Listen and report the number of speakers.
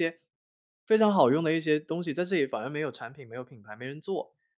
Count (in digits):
1